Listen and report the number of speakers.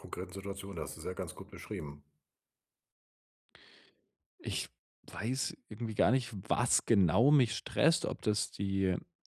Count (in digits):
2